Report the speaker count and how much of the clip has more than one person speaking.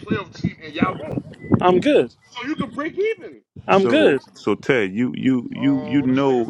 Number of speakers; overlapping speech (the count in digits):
3, about 21%